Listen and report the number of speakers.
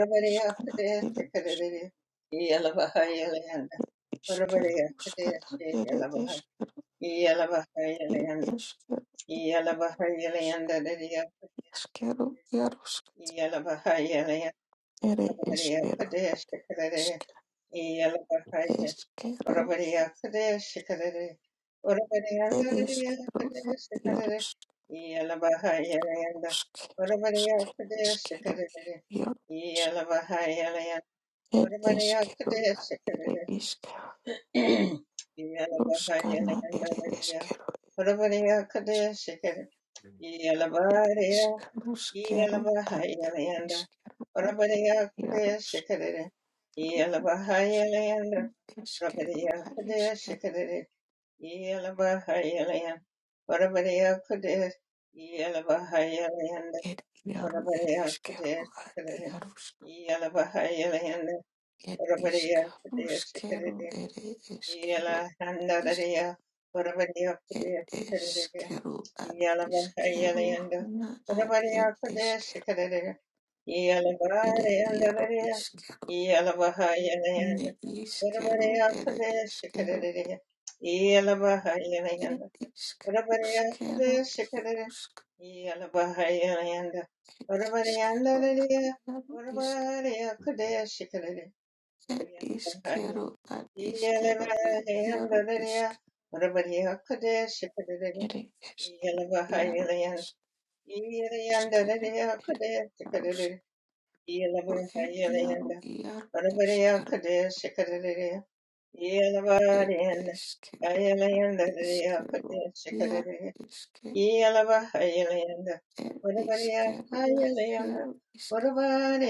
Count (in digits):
2